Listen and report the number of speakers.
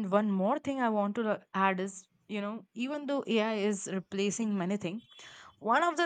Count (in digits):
1